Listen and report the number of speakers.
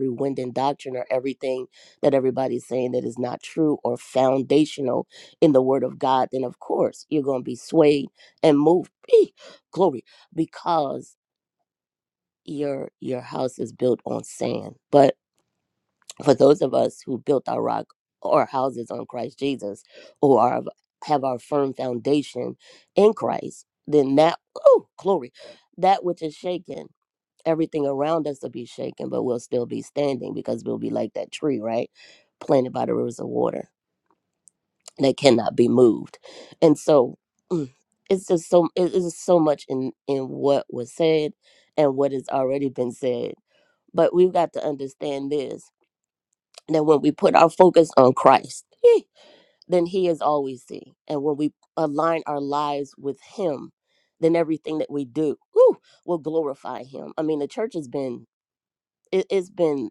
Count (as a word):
one